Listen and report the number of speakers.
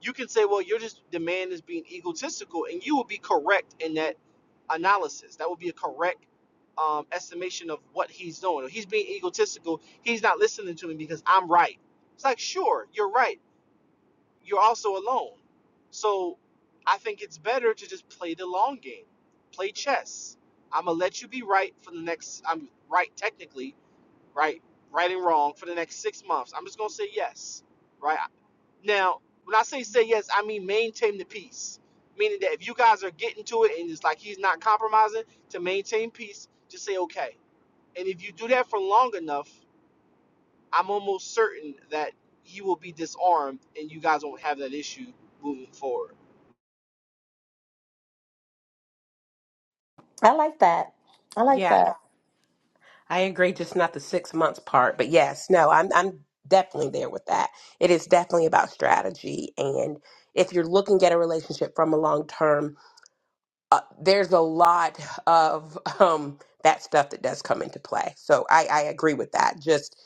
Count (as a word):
three